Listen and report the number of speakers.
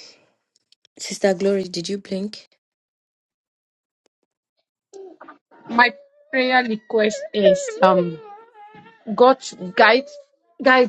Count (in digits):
2